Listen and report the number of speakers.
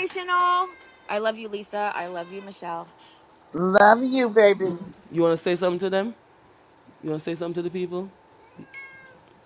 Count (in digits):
3